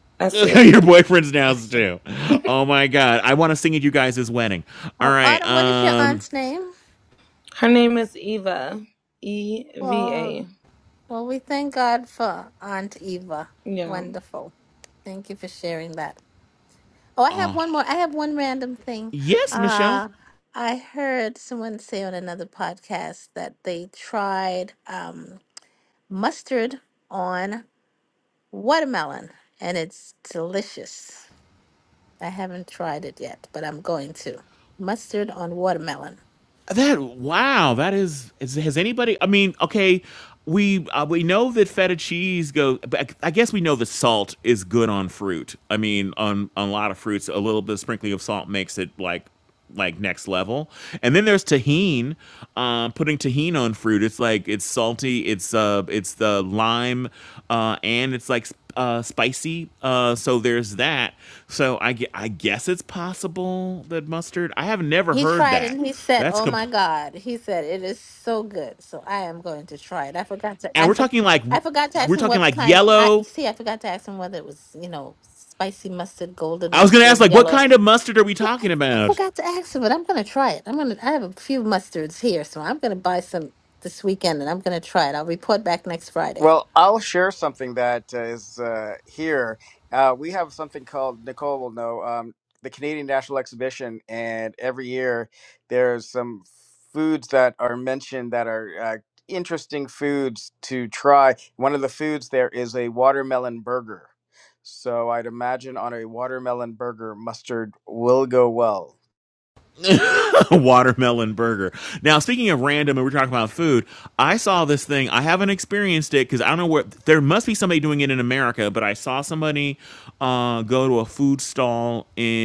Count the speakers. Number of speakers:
four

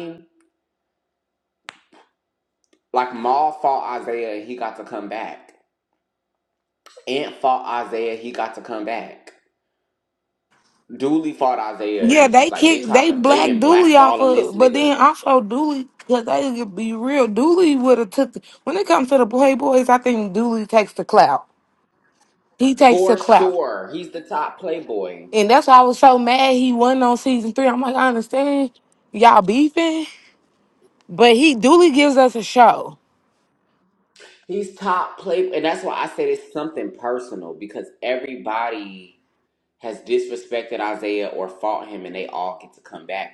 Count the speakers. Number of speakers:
two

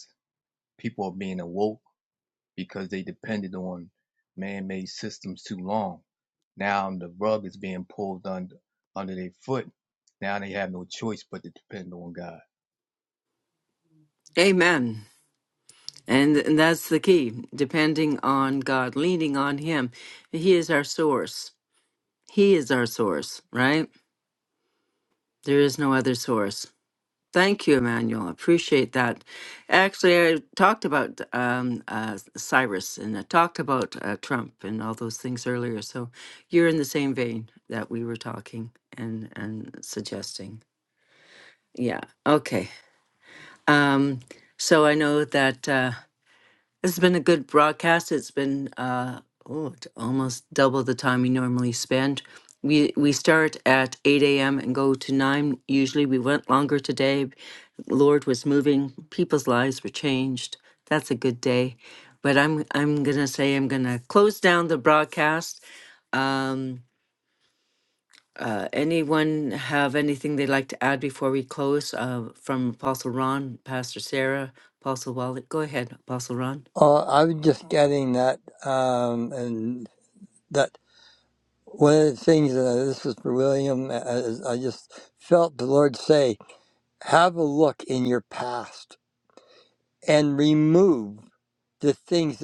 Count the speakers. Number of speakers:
three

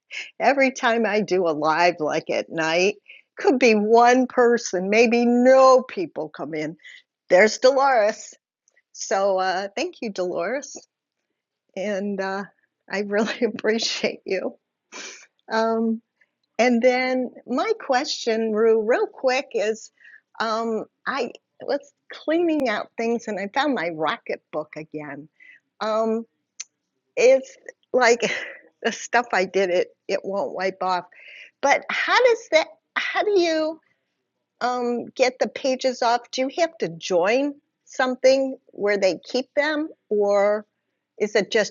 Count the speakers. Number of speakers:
one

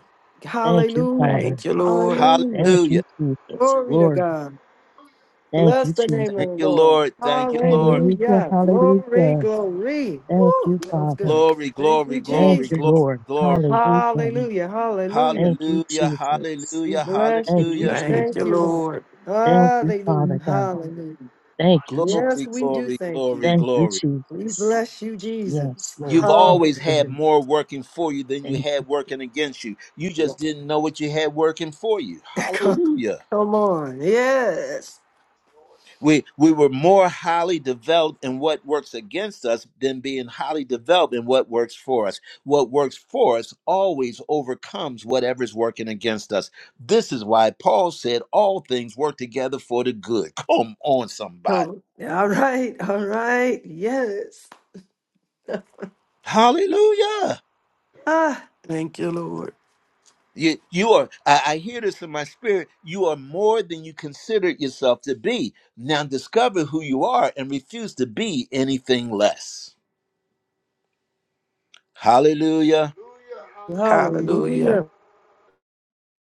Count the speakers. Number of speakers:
five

